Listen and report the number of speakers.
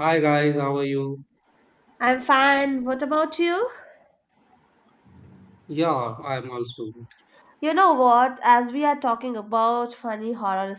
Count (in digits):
2